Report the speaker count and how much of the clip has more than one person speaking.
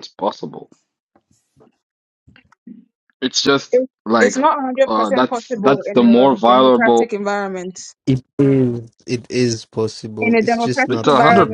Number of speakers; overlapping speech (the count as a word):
three, about 33%